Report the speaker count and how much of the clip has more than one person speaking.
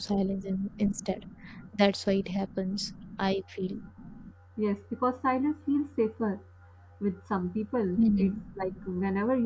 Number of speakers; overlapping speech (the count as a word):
two, about 5%